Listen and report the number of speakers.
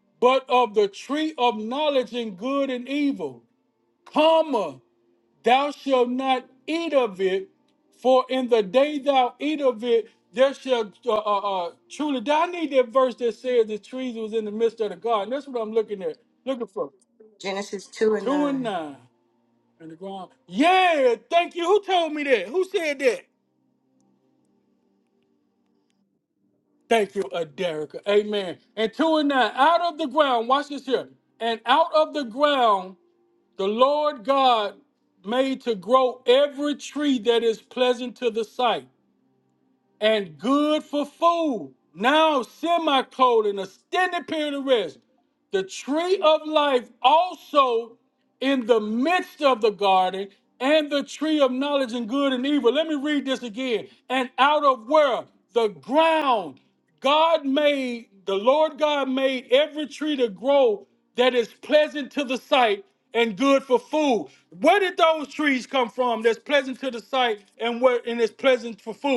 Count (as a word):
two